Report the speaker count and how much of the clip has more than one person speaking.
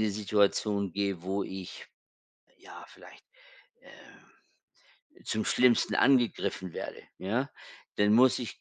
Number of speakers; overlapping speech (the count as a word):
one, no overlap